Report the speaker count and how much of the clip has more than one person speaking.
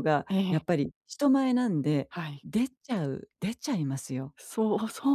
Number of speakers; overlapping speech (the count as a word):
two, about 6%